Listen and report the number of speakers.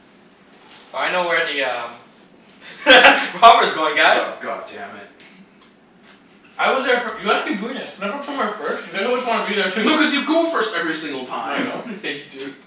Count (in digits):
3